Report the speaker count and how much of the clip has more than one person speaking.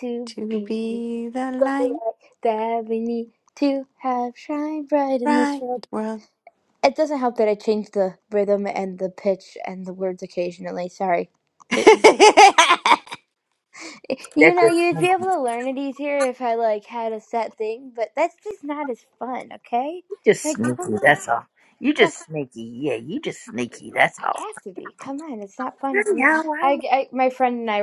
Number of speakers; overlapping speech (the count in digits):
3, about 14%